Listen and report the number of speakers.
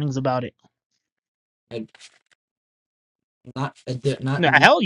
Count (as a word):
two